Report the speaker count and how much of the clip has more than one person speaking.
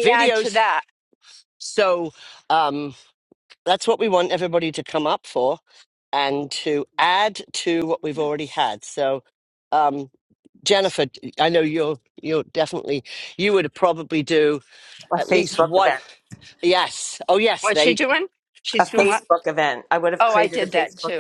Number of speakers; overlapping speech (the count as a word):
three, about 16%